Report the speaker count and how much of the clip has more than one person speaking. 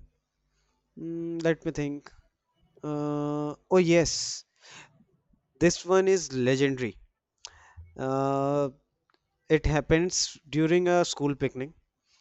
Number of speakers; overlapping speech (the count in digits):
1, no overlap